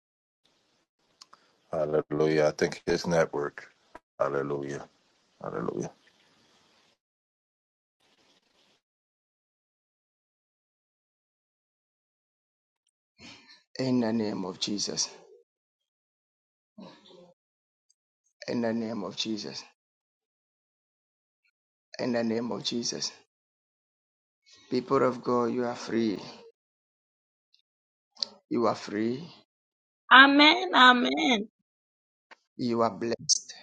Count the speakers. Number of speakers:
3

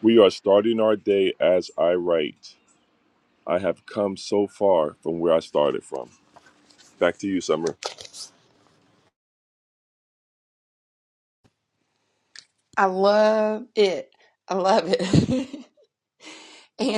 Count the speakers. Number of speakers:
2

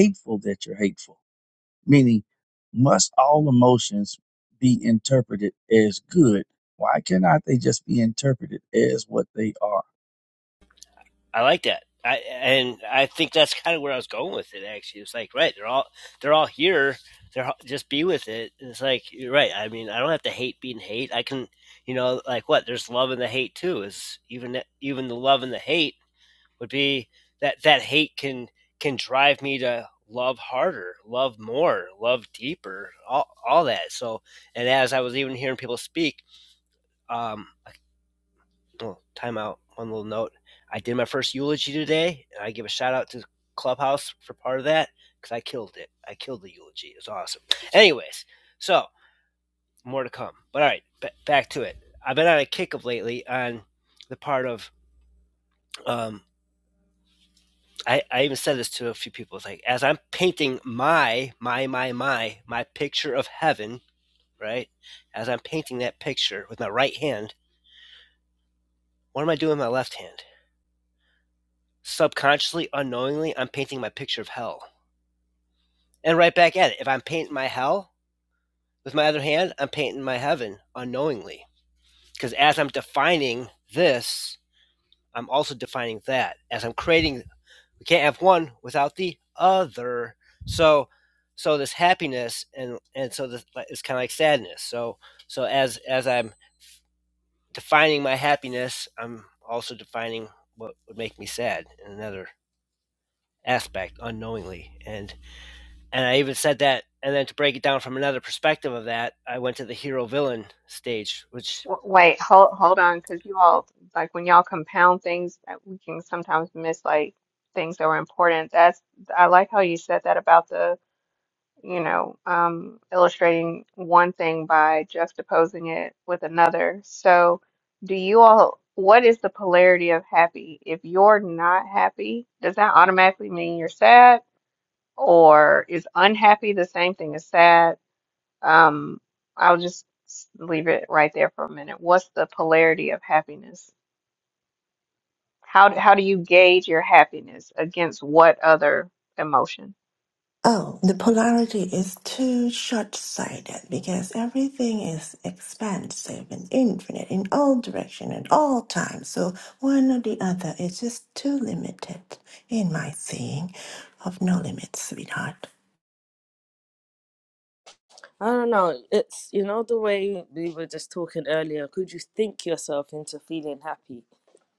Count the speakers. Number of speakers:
5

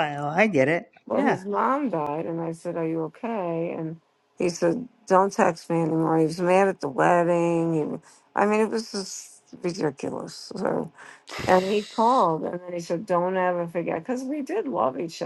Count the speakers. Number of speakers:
2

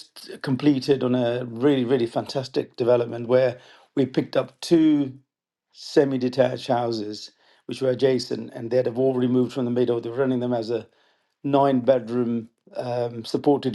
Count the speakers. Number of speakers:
1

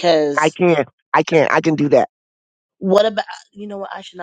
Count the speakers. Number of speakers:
2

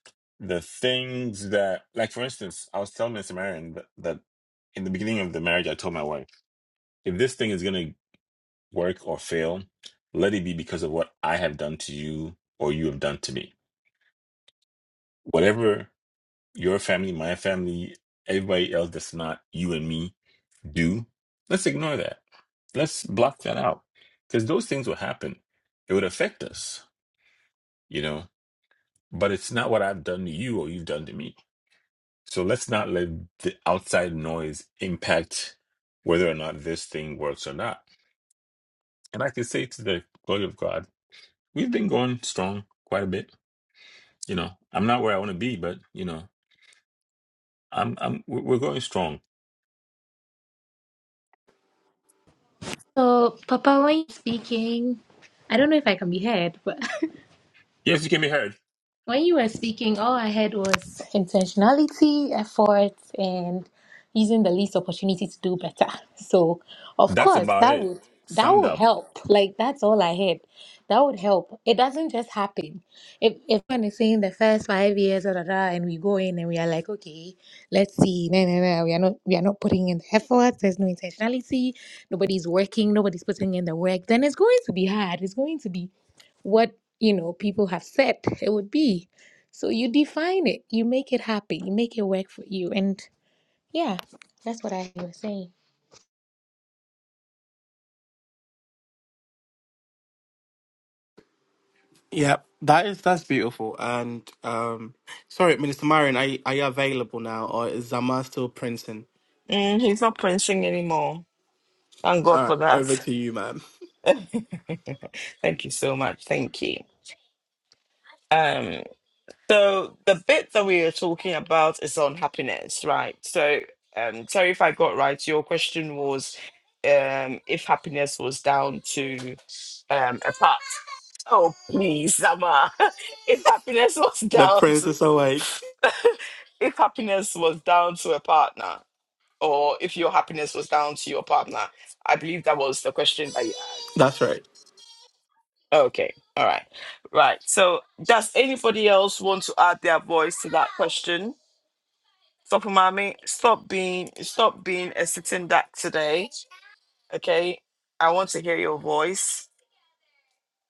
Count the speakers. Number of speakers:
4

